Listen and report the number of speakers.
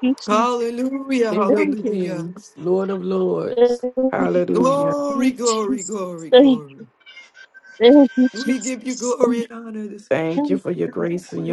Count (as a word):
three